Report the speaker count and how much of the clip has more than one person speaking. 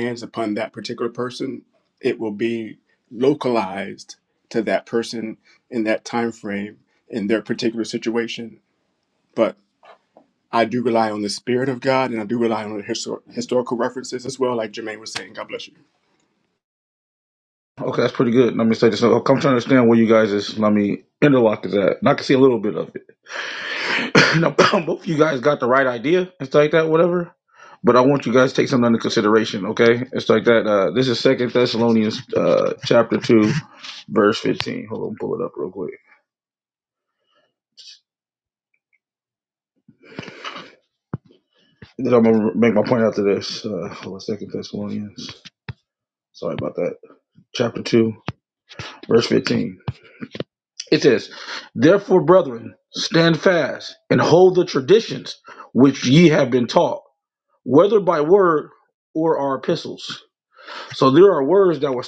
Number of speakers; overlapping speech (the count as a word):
two, no overlap